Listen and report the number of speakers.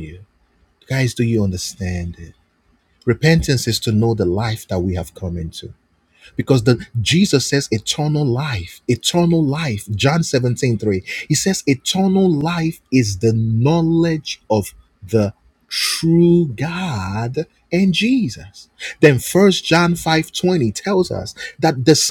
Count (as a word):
one